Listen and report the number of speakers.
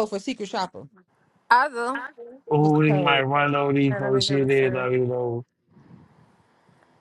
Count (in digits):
3